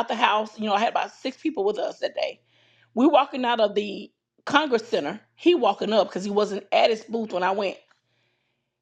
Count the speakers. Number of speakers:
one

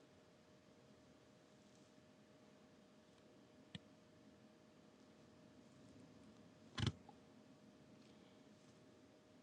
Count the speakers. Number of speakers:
zero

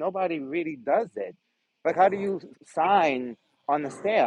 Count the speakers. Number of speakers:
one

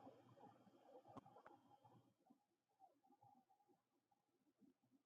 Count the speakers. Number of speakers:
zero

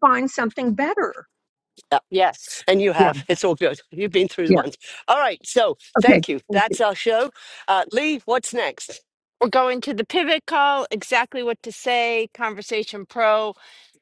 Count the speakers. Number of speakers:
three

